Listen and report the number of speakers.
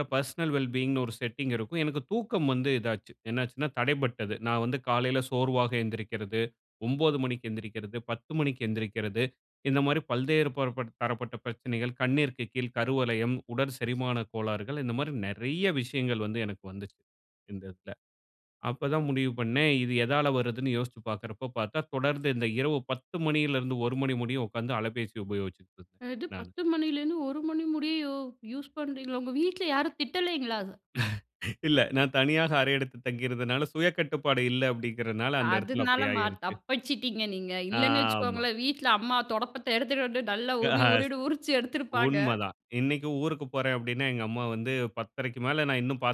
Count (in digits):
2